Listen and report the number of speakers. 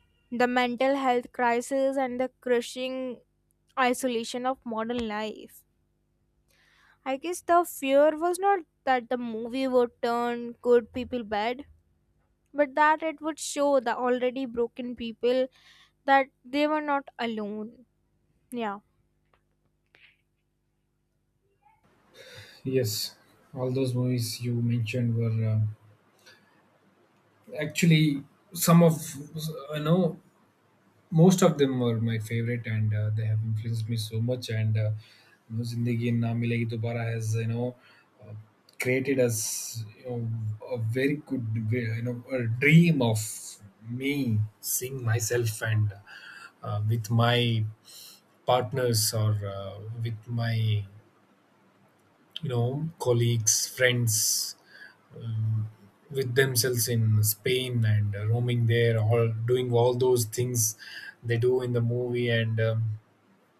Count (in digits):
2